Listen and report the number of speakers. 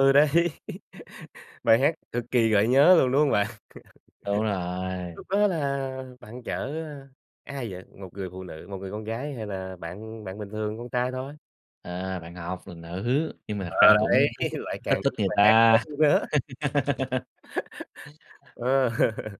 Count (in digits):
2